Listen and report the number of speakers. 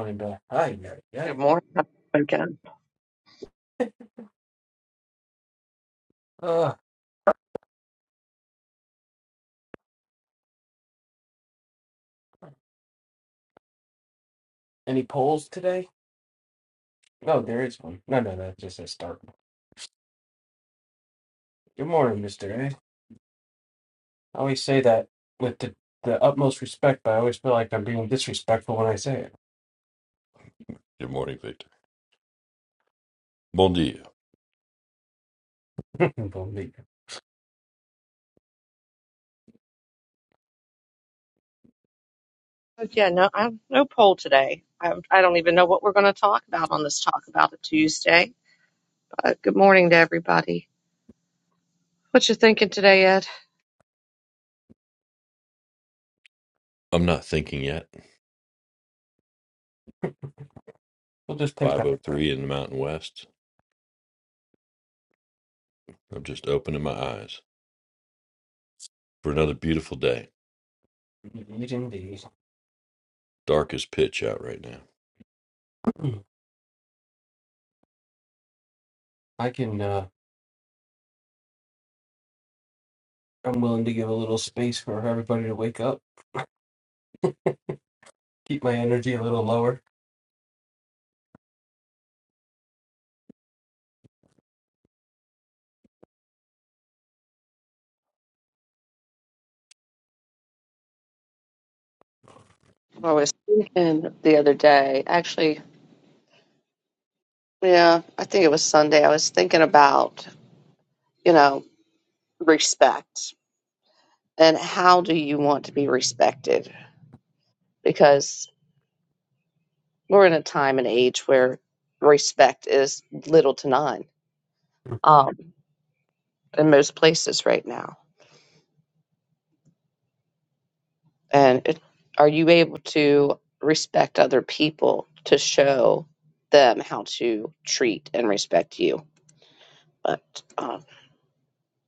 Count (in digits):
3